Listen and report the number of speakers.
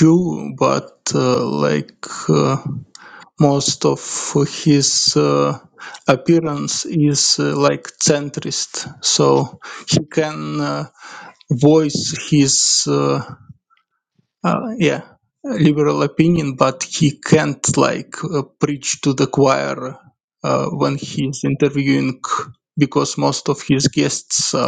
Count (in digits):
1